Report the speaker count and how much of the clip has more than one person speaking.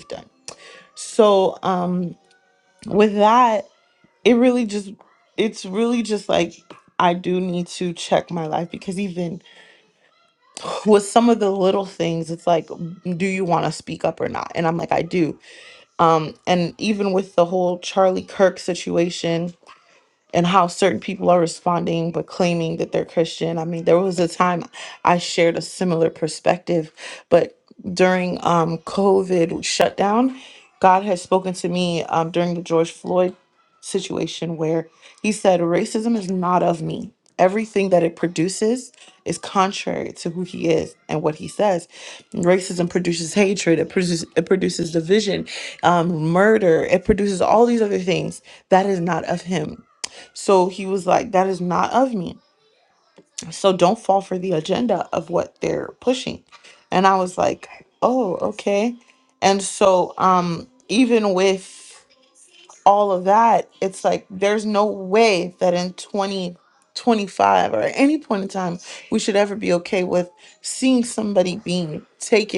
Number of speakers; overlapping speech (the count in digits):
1, no overlap